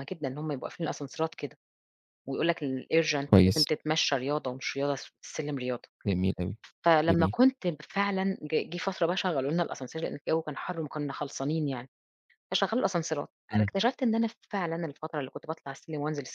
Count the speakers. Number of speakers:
two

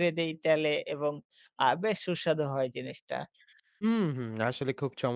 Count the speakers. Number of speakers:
two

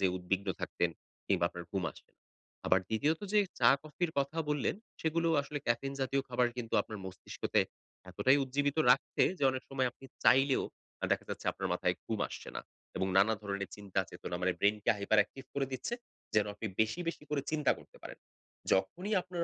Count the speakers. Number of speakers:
one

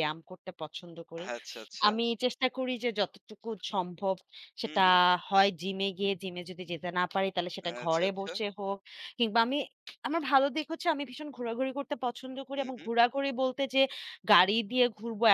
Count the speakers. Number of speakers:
two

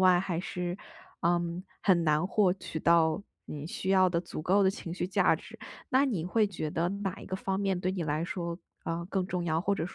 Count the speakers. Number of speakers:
one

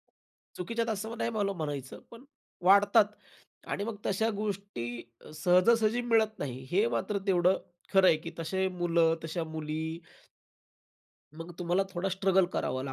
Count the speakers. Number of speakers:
one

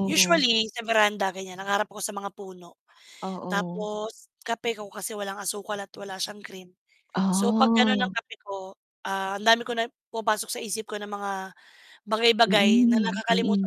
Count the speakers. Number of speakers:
two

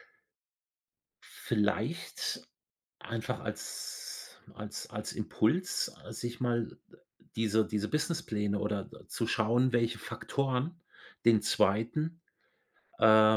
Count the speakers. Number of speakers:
one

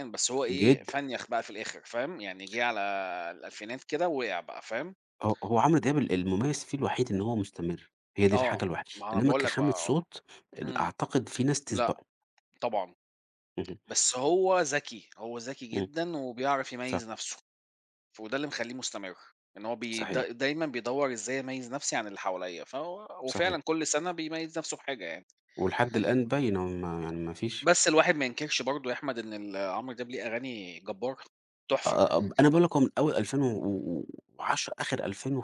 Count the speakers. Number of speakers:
two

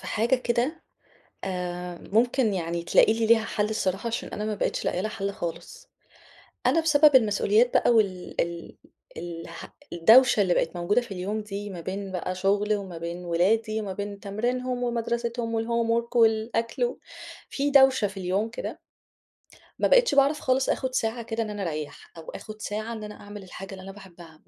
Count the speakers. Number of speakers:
one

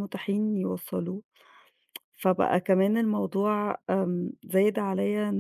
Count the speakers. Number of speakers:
one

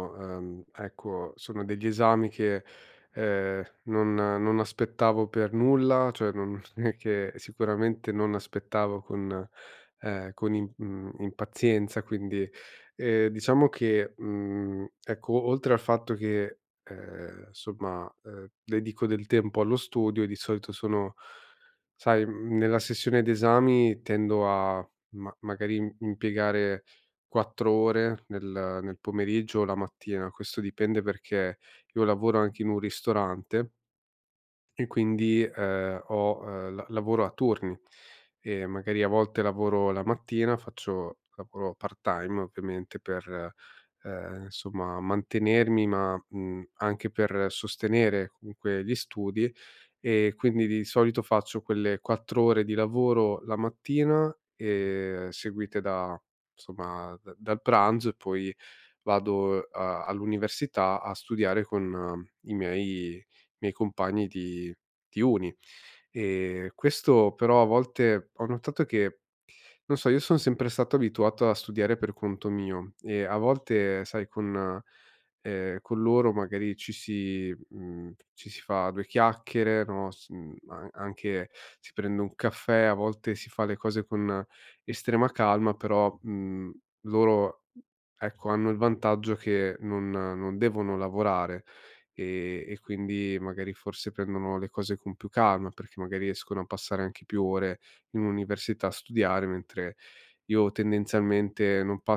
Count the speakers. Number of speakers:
one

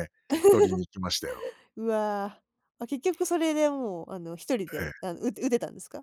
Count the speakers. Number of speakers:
two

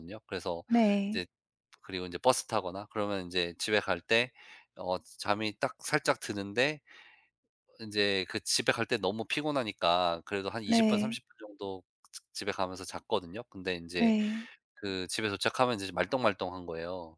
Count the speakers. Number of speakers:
two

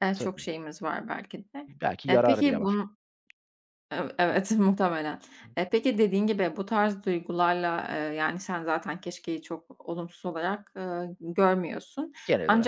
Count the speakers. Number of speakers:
two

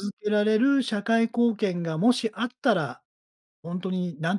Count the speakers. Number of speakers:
one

